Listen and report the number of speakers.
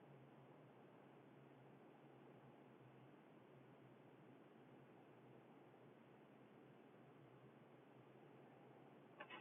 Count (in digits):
0